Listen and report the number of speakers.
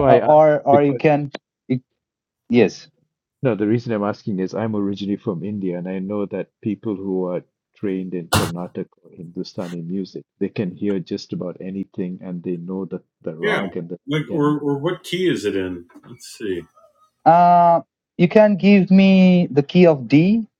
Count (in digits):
3